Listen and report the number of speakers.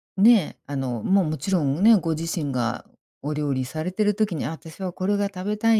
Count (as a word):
one